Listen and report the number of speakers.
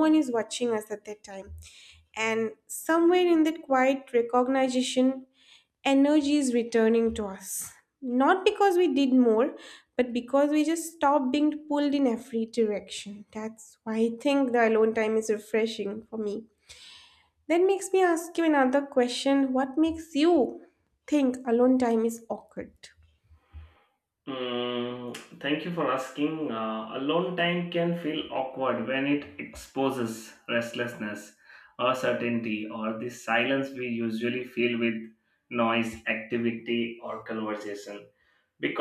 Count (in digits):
2